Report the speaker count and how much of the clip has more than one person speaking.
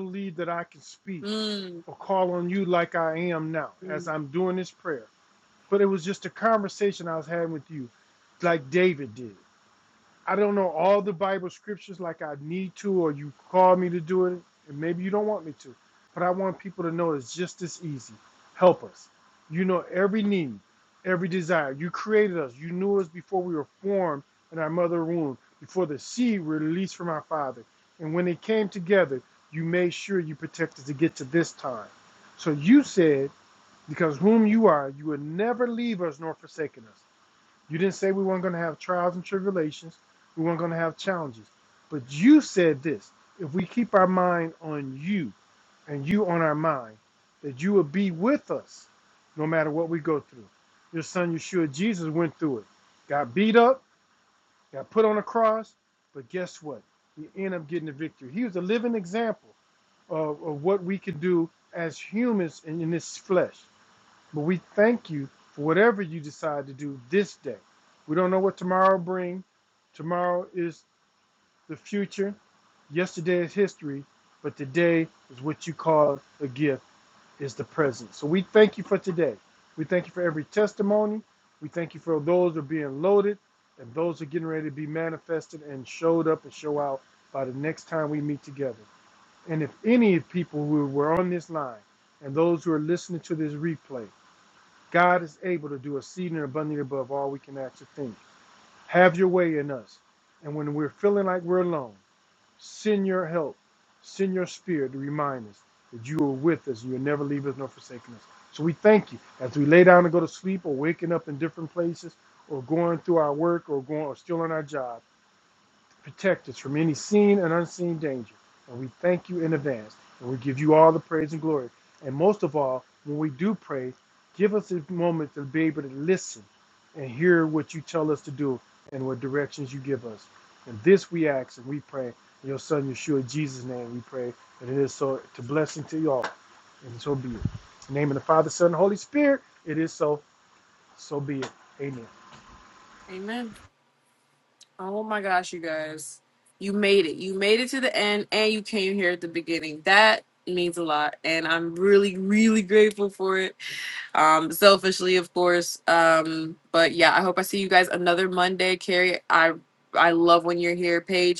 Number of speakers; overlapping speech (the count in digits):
2, under 1%